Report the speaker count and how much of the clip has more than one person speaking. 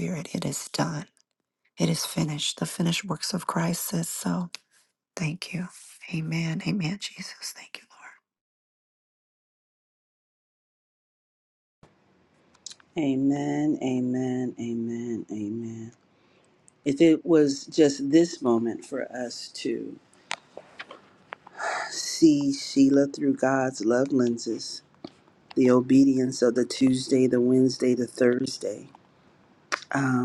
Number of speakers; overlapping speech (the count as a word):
two, no overlap